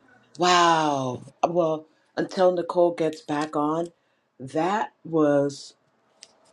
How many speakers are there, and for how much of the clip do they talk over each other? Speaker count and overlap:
1, no overlap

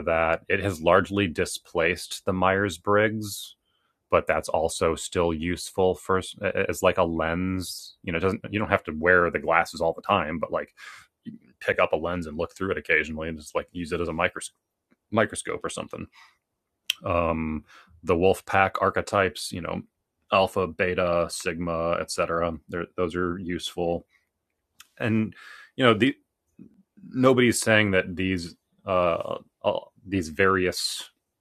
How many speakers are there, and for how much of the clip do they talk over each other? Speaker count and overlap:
1, no overlap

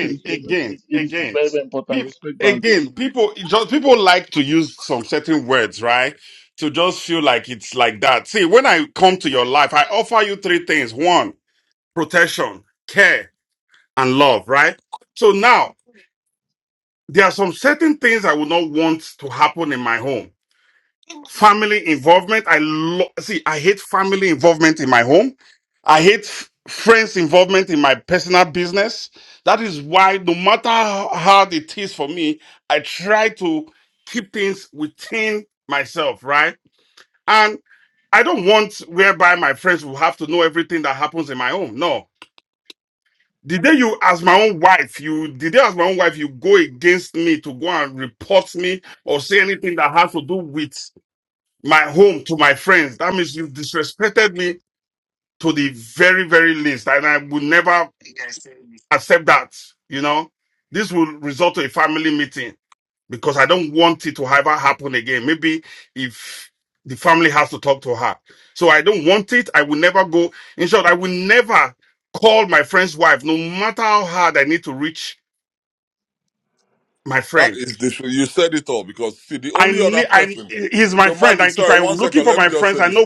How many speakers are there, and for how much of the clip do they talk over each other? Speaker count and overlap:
3, about 6%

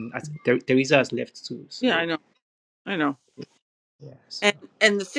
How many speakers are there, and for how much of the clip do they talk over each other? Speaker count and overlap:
2, about 5%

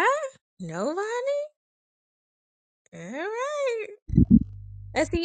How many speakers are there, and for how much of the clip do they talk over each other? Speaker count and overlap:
1, no overlap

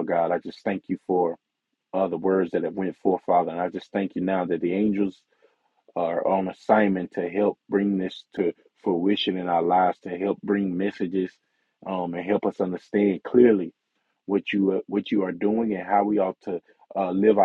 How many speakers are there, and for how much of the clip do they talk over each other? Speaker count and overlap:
1, no overlap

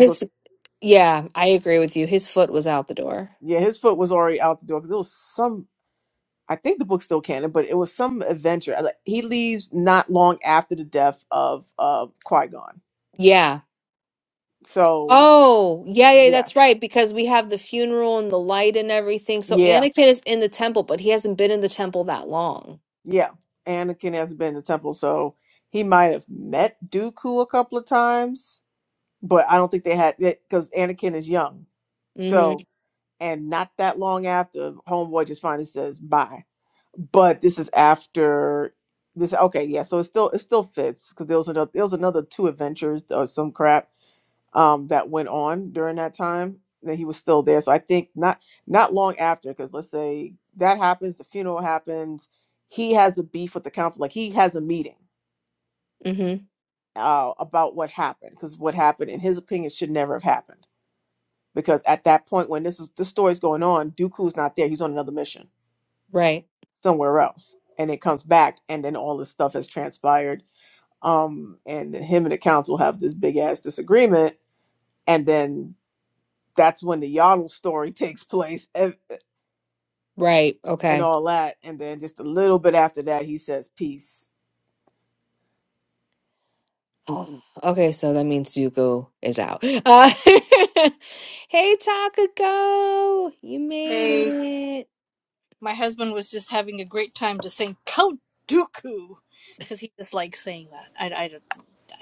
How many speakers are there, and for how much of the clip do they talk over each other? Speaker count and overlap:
3, about 2%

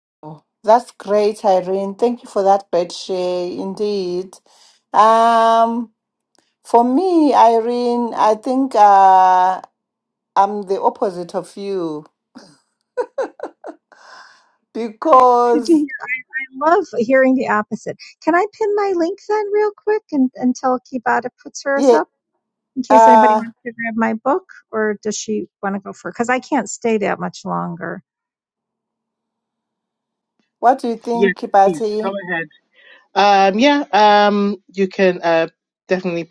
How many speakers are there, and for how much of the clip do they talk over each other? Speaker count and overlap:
3, about 6%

